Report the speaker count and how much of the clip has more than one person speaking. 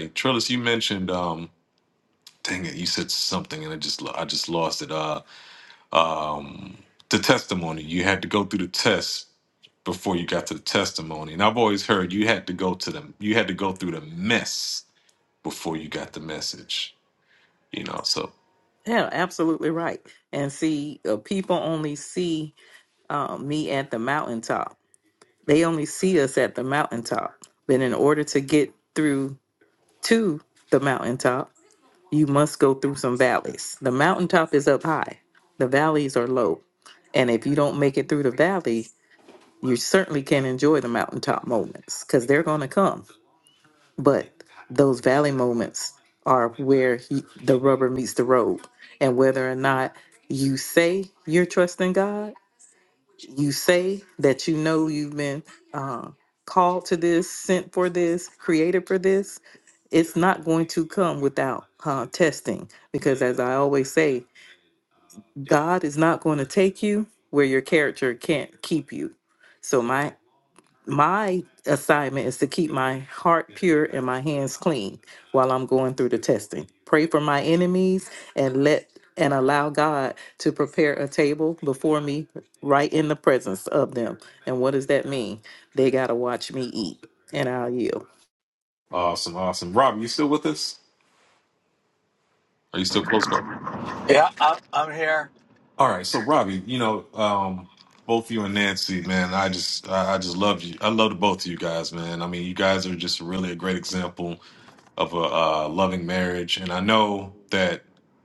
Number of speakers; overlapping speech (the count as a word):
three, no overlap